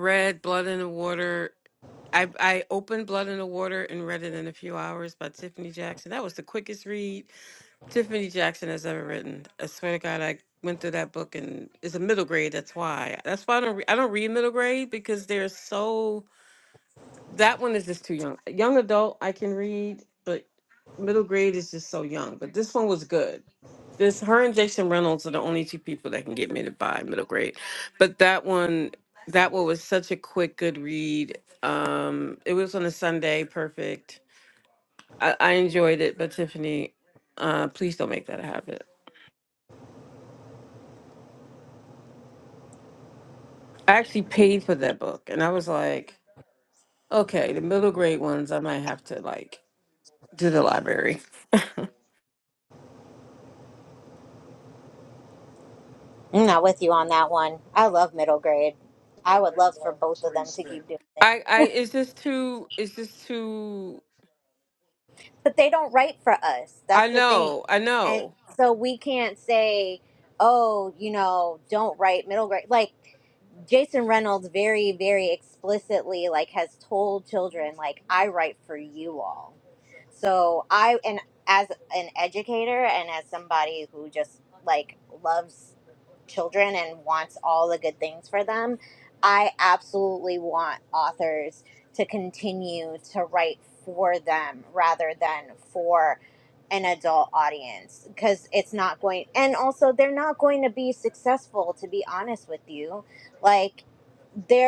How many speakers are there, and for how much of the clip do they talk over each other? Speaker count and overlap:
2, about 1%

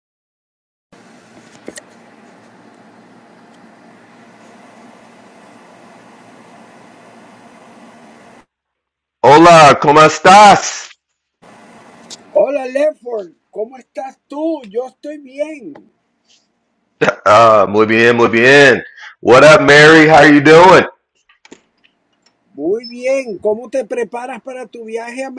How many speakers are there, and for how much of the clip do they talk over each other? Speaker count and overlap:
2, no overlap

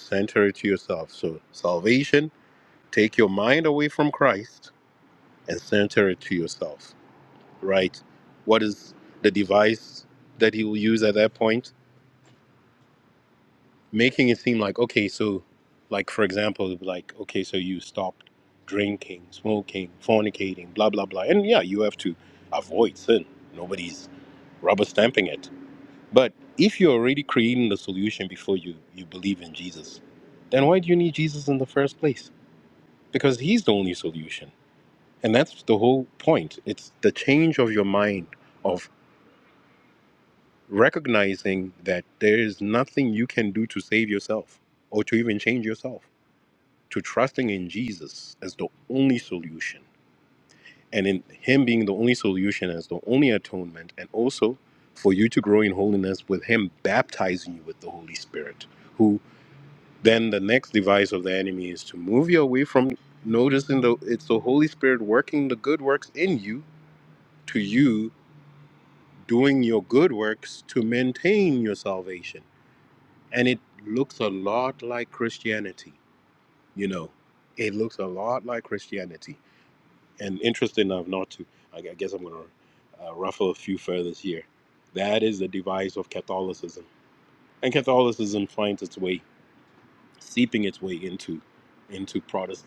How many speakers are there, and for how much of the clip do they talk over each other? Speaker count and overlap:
1, no overlap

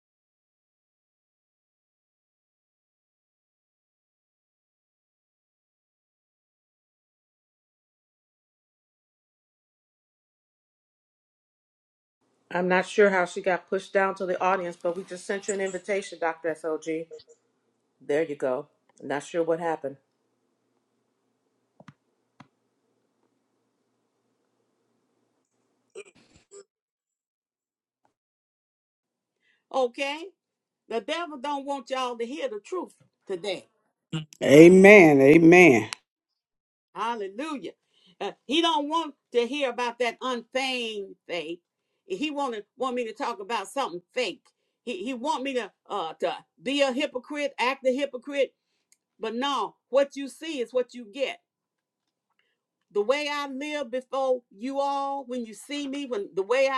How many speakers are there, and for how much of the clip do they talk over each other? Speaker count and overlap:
3, no overlap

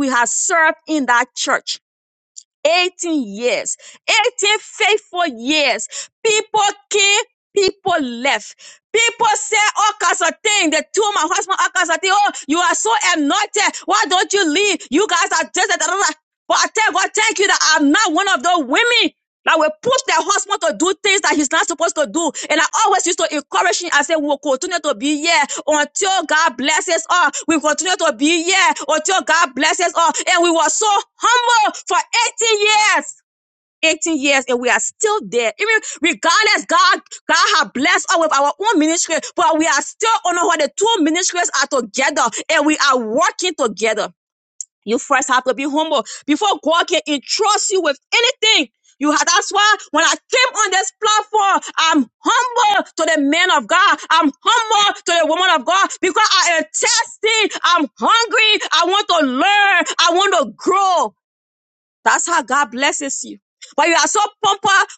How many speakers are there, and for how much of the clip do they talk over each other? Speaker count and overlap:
1, no overlap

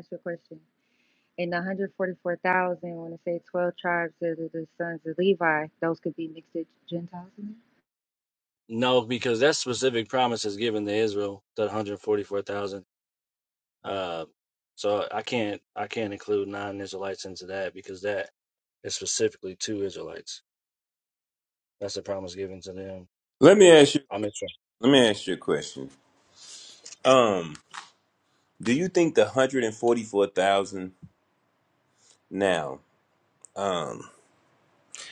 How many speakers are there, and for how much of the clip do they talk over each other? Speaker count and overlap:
3, no overlap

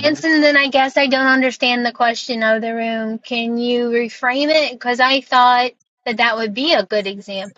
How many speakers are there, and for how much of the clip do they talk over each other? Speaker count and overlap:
1, no overlap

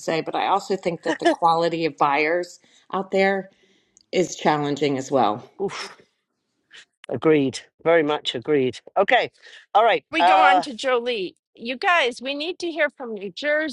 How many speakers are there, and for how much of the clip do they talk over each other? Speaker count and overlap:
3, about 4%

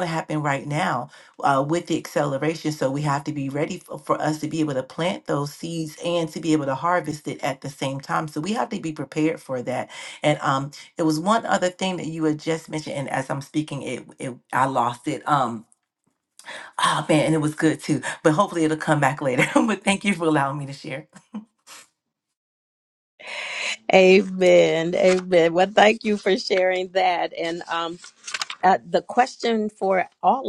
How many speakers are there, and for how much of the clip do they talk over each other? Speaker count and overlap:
2, no overlap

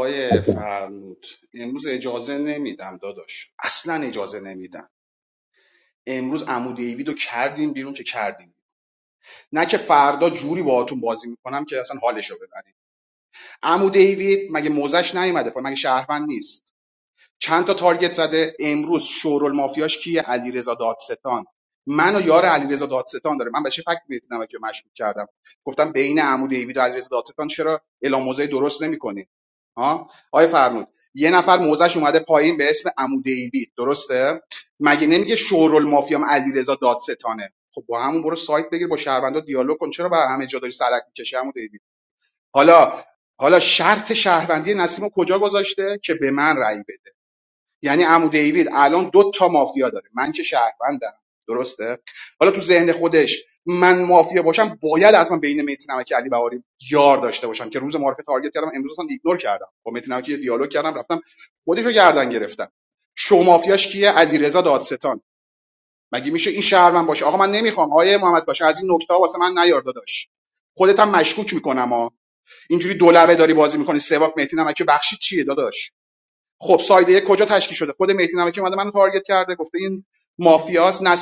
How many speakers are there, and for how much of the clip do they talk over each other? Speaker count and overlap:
1, no overlap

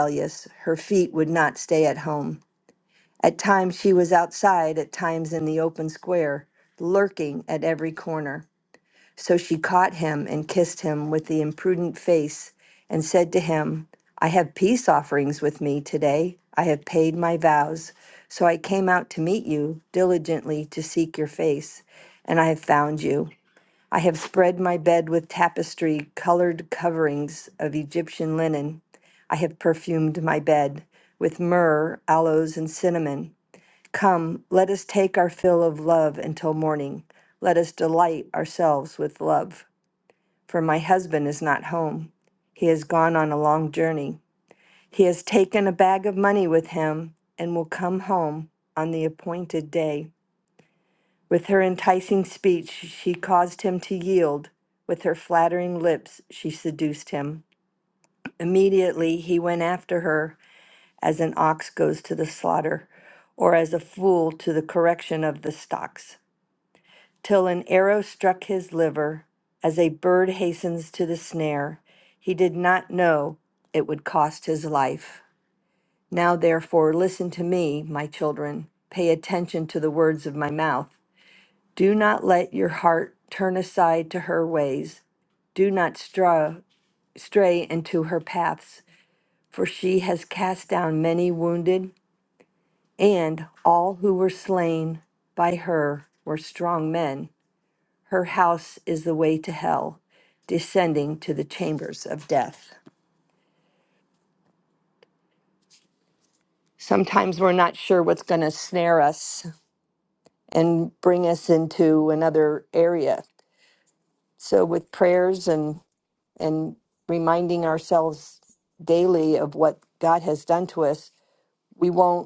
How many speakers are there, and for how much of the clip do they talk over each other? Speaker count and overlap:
1, no overlap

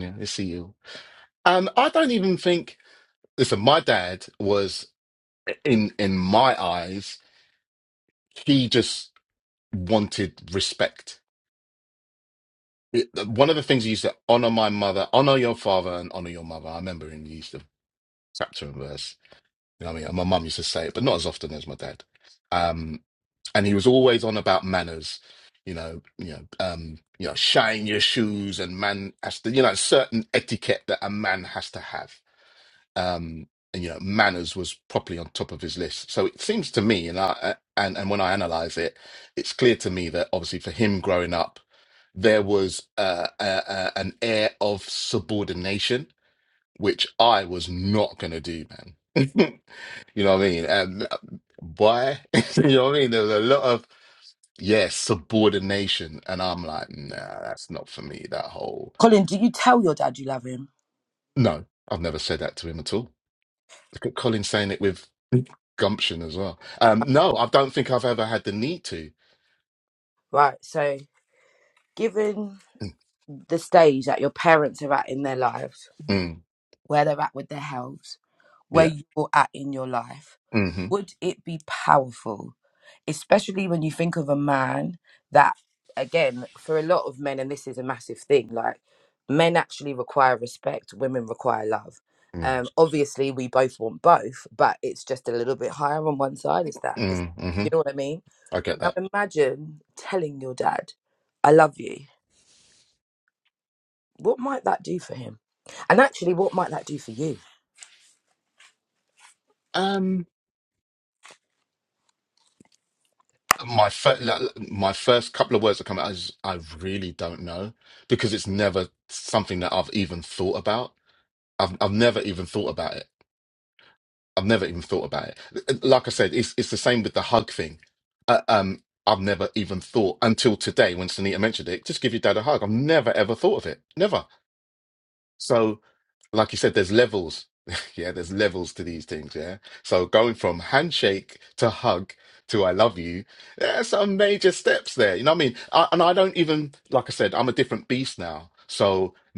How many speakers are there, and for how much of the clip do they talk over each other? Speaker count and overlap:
2, under 1%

